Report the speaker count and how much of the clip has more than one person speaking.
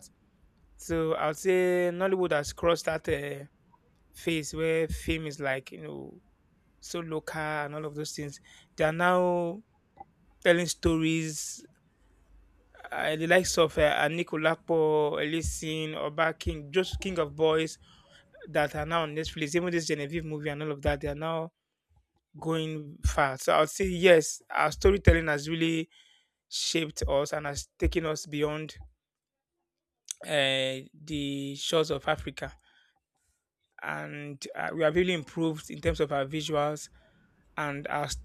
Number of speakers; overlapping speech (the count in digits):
1, no overlap